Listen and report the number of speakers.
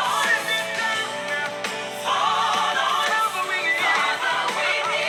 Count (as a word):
zero